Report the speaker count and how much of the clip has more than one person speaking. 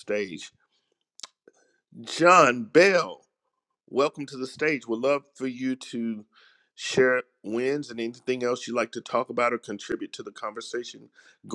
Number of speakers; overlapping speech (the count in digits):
1, no overlap